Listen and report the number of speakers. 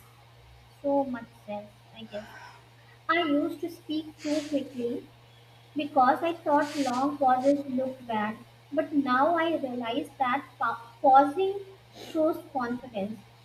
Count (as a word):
one